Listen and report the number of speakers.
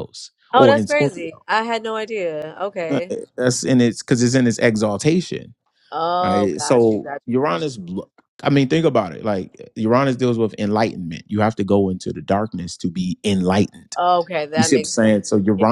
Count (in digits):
2